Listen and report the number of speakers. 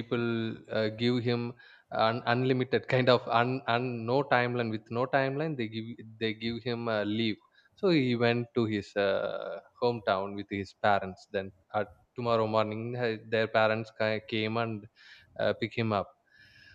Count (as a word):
one